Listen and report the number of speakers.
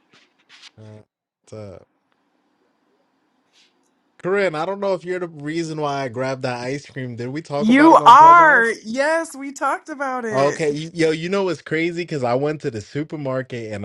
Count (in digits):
2